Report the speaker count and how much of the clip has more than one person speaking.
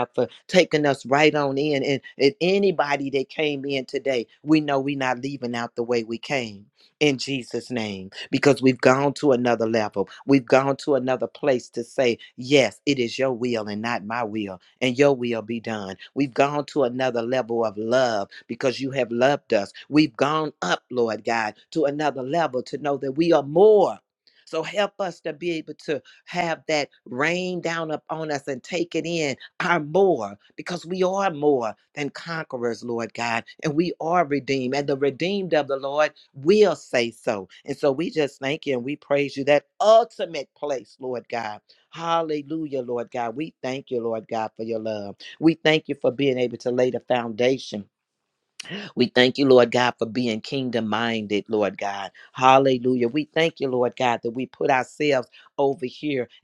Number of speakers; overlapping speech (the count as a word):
one, no overlap